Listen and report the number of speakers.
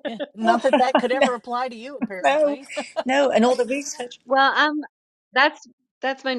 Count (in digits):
3